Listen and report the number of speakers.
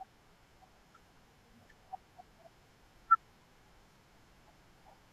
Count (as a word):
zero